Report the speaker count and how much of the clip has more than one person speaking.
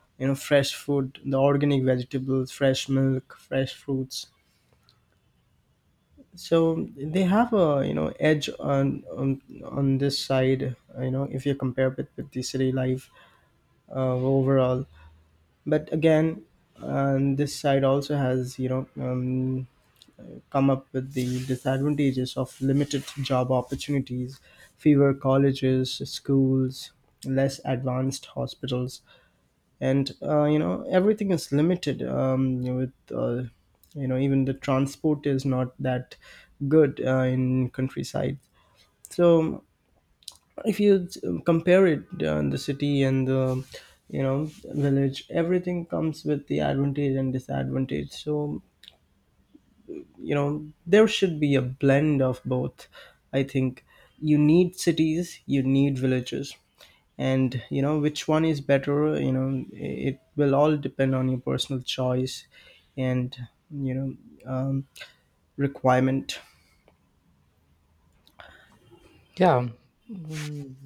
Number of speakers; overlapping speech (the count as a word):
two, no overlap